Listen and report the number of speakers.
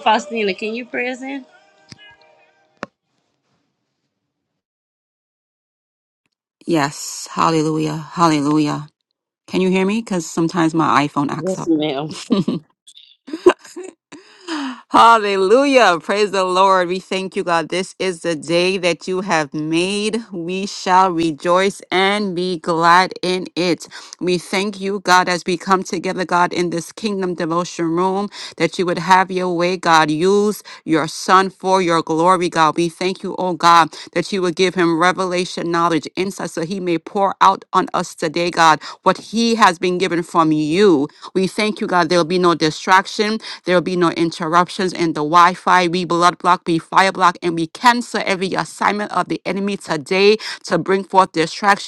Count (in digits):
2